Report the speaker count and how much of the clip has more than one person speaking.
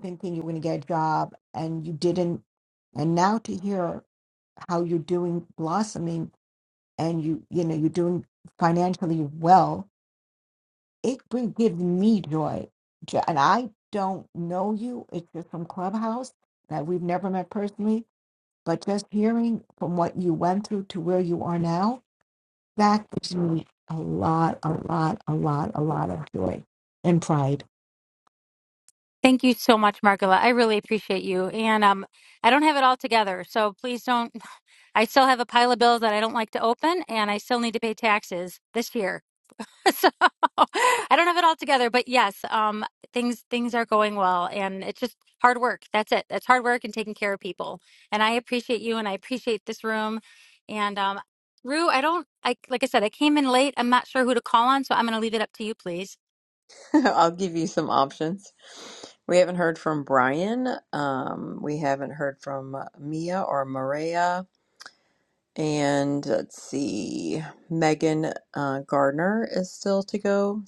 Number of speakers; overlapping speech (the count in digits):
3, no overlap